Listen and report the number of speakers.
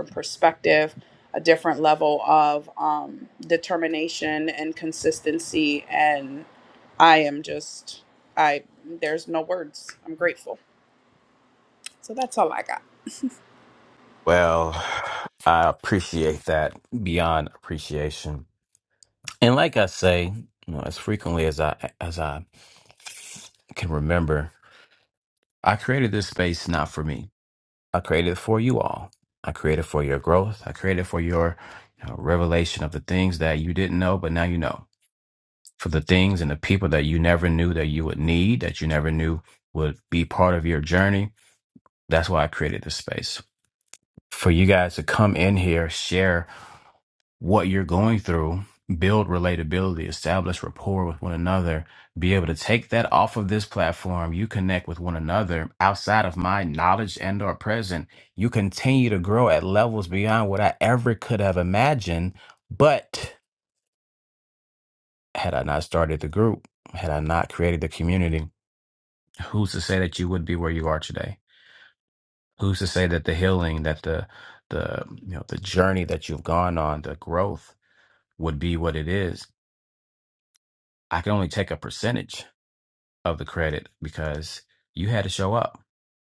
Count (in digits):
2